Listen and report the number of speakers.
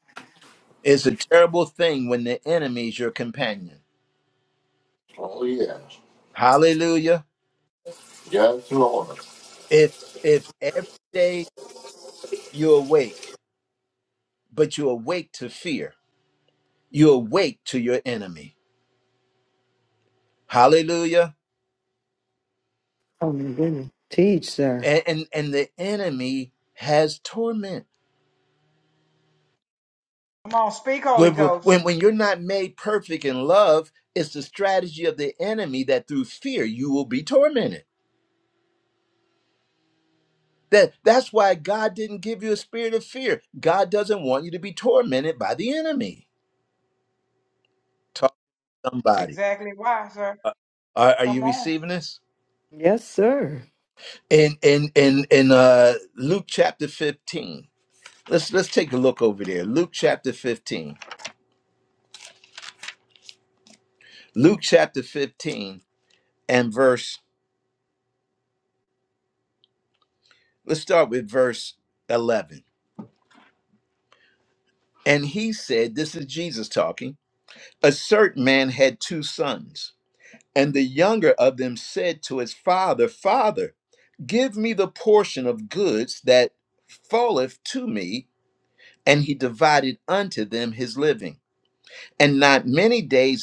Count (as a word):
four